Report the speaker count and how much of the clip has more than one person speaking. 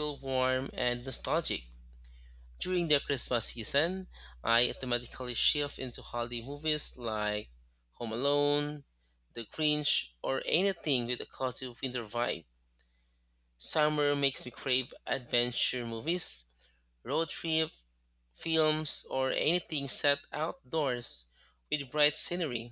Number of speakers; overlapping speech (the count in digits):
1, no overlap